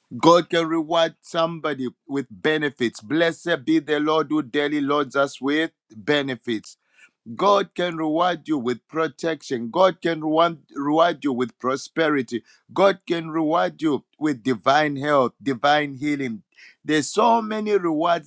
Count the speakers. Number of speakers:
one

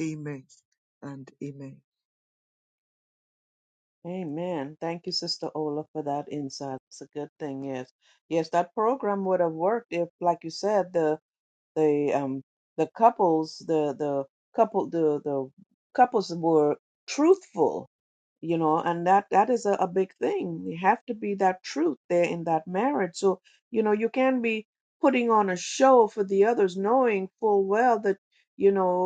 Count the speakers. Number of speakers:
two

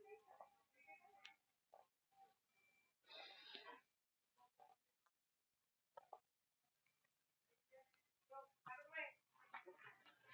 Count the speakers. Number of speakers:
zero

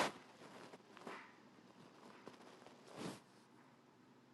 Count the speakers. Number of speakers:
zero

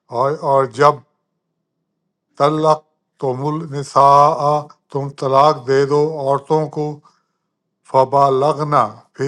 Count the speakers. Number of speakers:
one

